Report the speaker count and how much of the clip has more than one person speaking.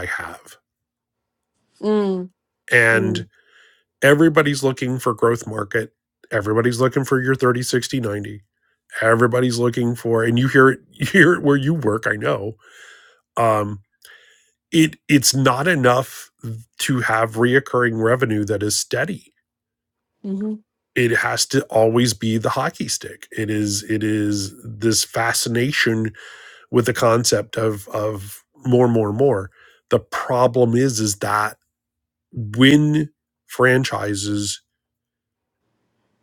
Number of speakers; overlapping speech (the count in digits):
2, about 1%